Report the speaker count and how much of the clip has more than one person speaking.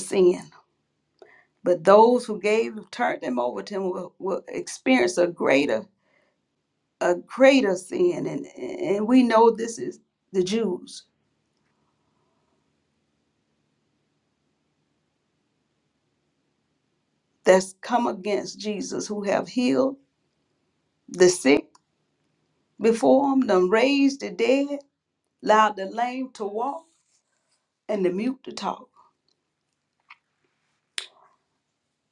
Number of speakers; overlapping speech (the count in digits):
1, no overlap